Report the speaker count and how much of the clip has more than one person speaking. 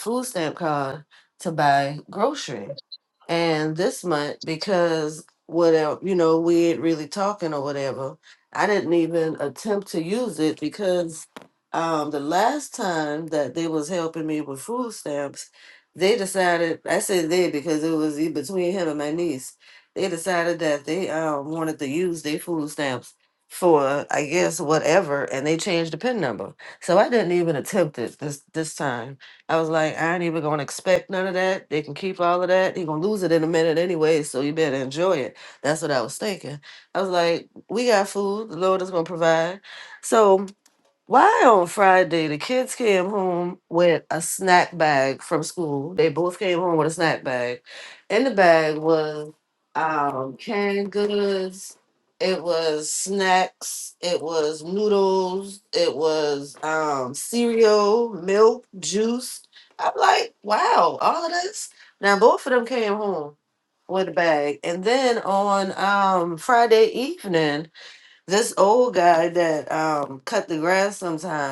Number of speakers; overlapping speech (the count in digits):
1, no overlap